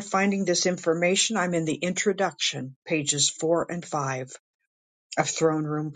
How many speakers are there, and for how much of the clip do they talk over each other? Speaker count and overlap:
1, no overlap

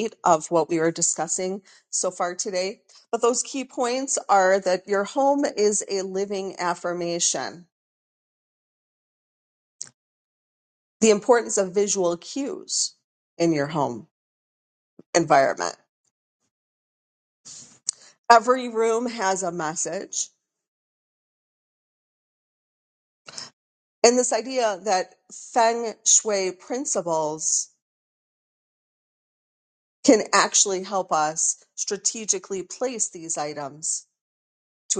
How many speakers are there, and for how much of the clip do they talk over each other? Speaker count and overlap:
1, no overlap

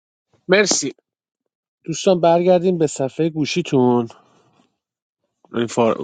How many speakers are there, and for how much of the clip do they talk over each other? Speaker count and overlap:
1, no overlap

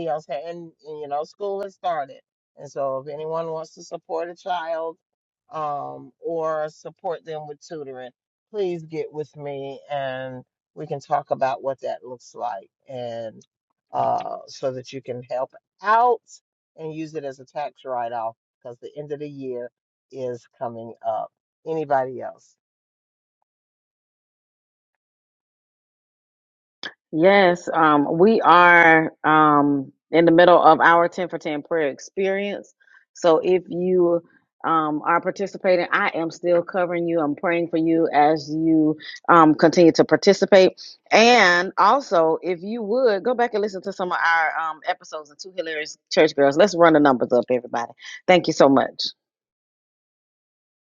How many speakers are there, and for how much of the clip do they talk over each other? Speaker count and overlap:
2, no overlap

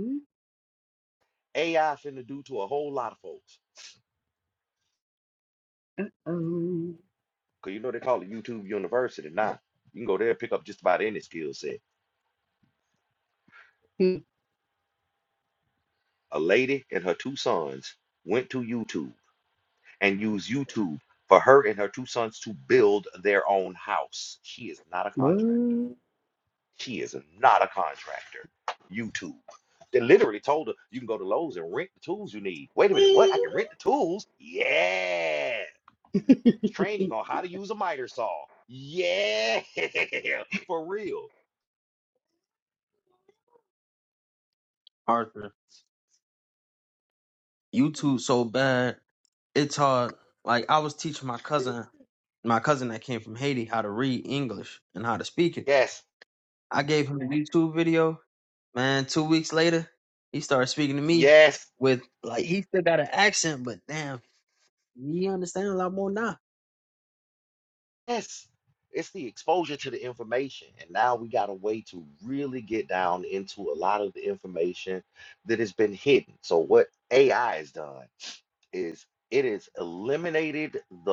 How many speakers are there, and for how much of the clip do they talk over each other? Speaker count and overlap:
3, about 1%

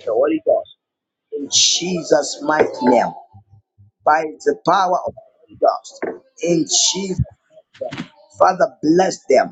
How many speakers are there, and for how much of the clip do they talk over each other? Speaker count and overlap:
1, no overlap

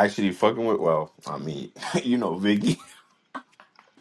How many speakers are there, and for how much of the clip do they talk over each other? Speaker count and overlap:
1, no overlap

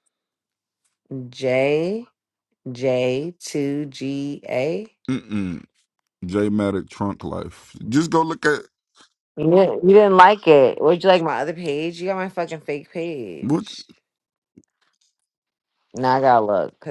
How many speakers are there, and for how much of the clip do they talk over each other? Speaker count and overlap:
2, about 2%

